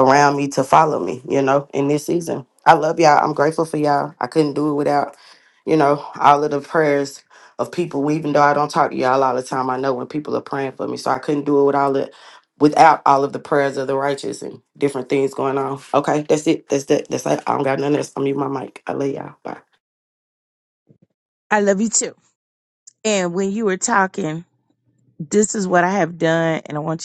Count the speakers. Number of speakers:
2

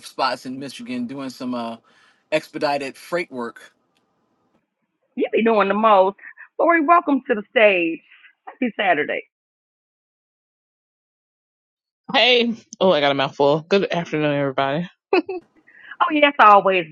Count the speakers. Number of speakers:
3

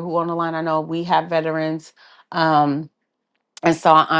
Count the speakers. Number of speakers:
1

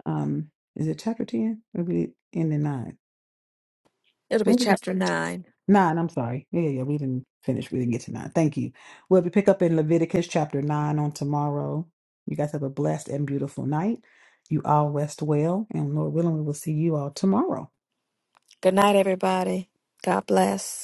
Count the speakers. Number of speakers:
2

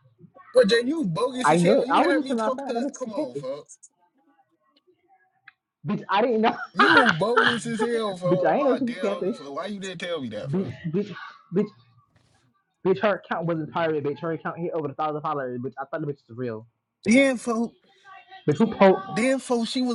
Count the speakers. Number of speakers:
2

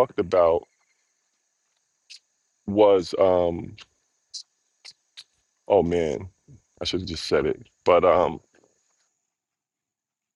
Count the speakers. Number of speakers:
1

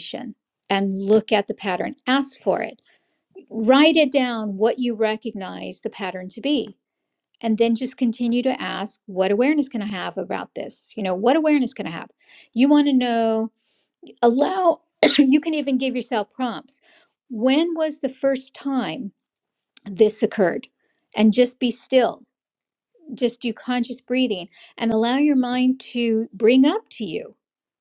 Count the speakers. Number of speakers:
1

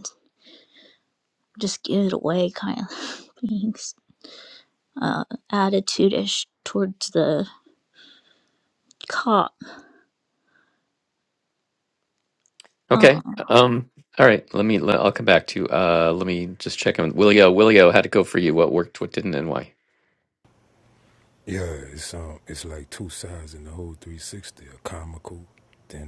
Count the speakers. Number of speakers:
3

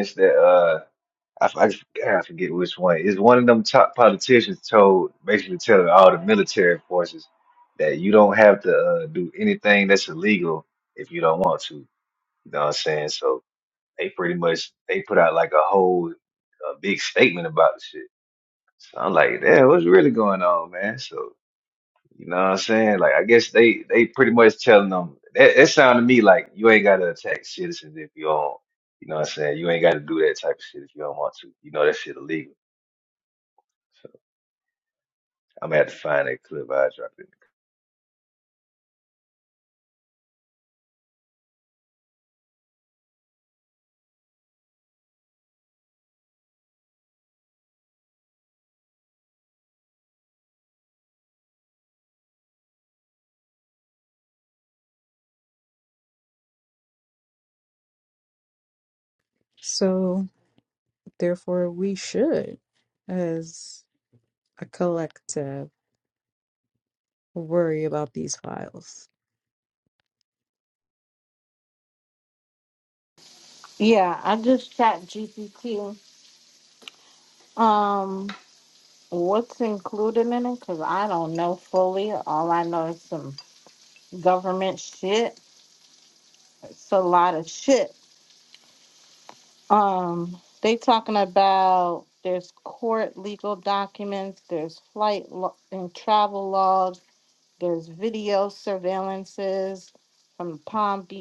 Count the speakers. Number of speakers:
3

